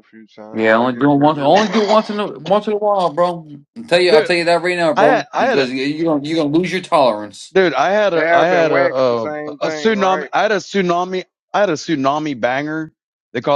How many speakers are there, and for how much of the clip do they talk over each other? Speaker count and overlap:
three, about 29%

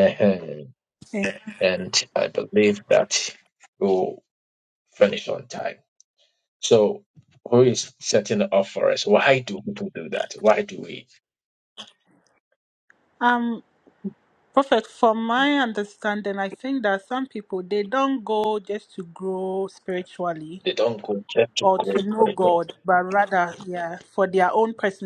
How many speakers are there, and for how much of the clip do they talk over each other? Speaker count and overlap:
two, about 4%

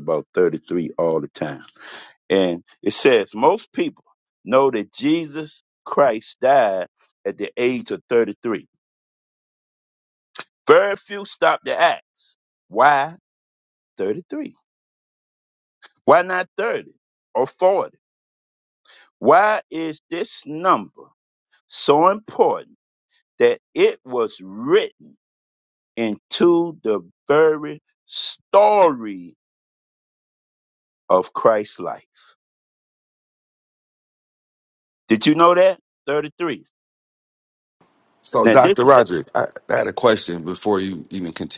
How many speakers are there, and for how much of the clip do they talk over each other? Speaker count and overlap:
two, about 1%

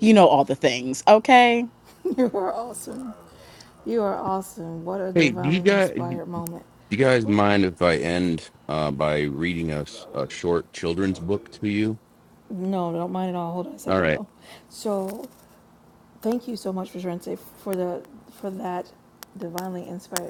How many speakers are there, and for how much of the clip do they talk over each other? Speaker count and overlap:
three, about 6%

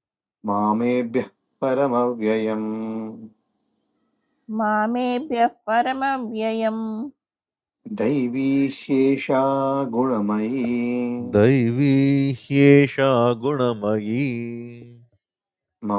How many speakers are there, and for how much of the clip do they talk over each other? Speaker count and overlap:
three, no overlap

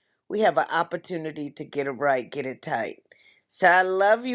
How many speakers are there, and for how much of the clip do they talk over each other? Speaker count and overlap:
one, no overlap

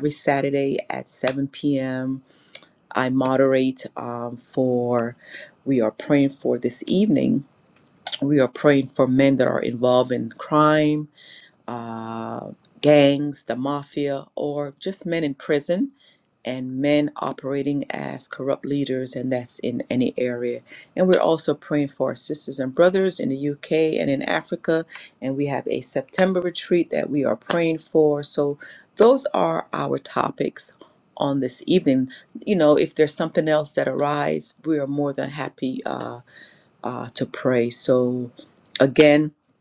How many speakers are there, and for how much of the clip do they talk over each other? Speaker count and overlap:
one, no overlap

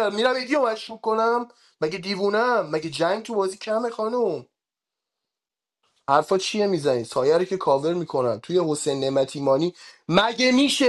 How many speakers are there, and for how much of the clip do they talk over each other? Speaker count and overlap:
one, no overlap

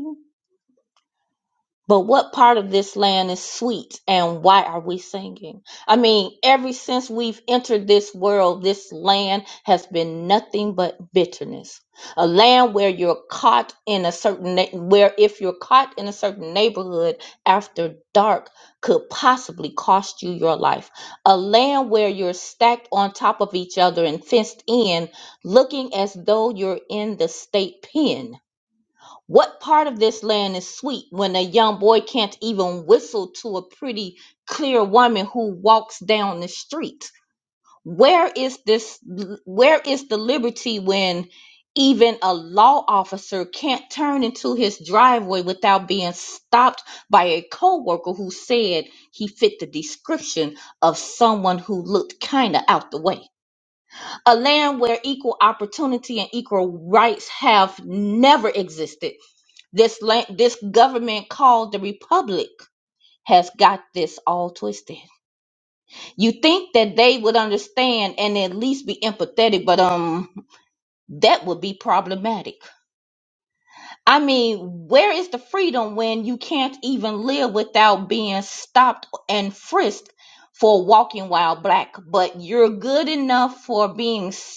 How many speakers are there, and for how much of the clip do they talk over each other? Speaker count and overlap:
one, no overlap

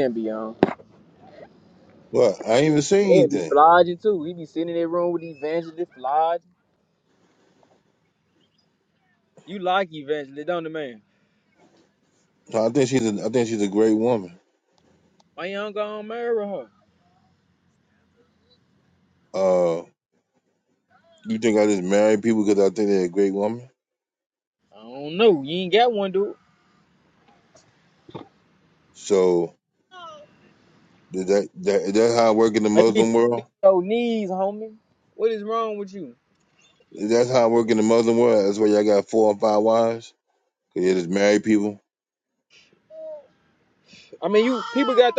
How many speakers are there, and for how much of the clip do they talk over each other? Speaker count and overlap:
two, about 2%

